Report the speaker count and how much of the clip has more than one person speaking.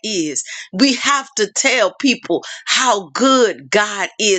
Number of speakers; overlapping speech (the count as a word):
one, no overlap